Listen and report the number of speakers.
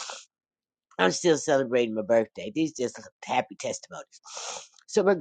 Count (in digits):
1